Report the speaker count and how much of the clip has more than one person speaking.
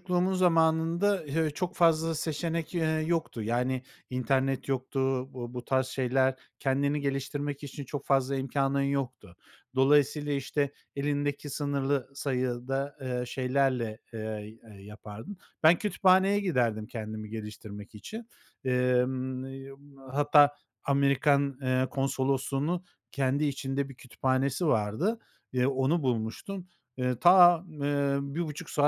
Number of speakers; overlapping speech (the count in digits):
1, no overlap